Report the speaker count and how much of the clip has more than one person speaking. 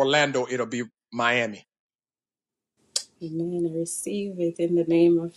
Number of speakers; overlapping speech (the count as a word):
two, no overlap